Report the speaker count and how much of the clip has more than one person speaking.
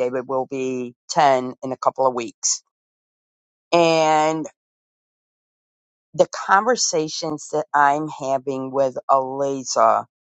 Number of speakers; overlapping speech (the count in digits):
1, no overlap